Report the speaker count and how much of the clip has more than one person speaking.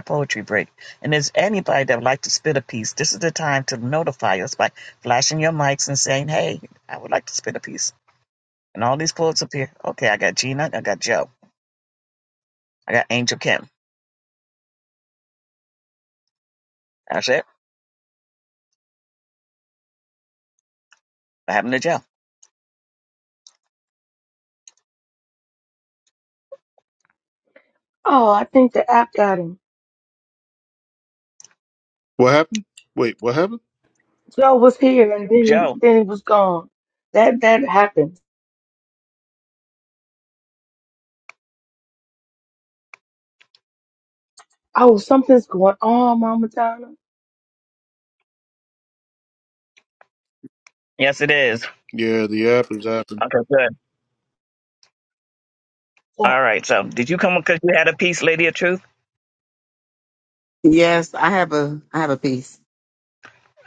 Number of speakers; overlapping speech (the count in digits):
4, about 1%